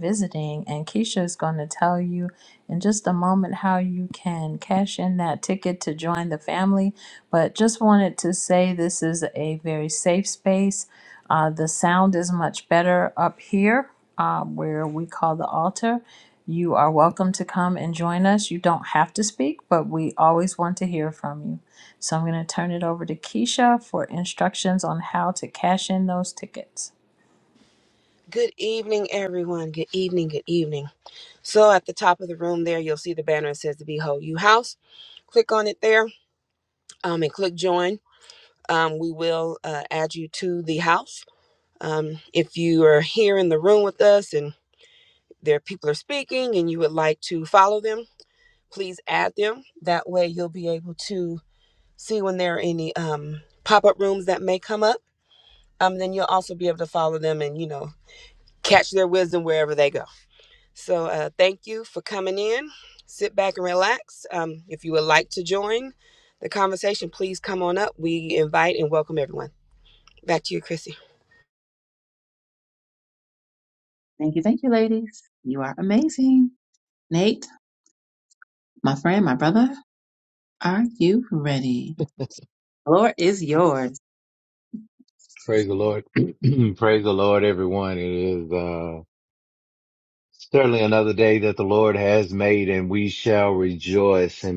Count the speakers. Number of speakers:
4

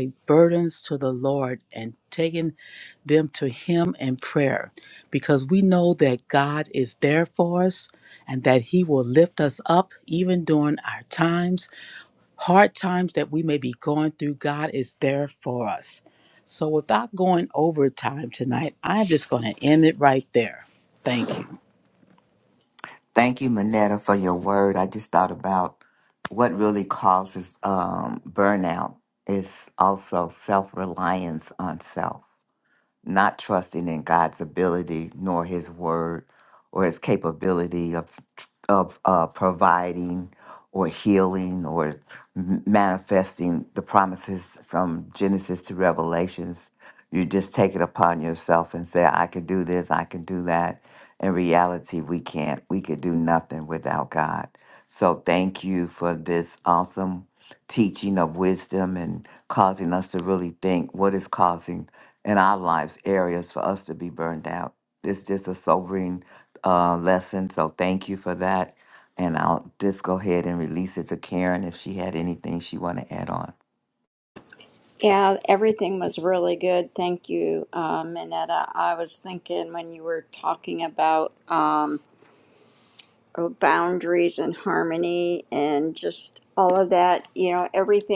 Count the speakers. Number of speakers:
3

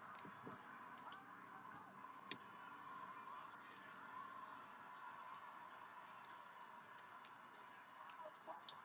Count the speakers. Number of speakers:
0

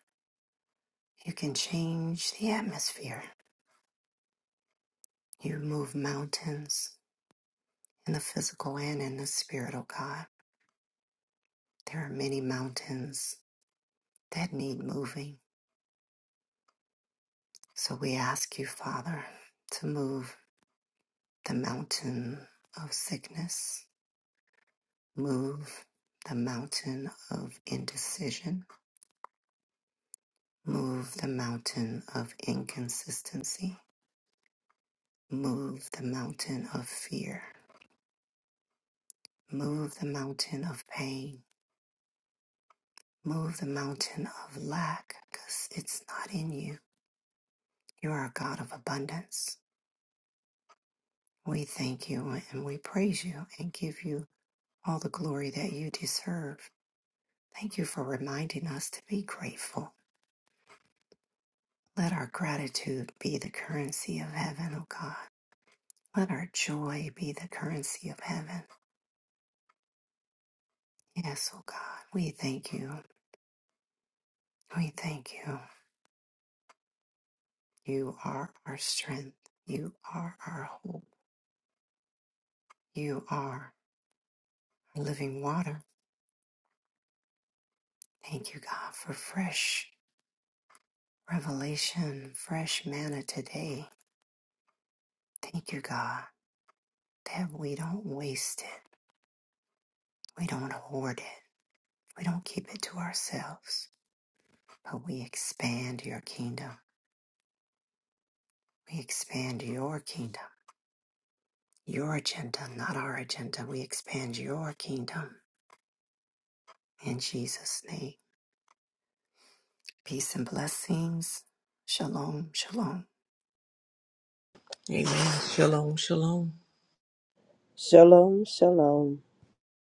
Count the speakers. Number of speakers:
3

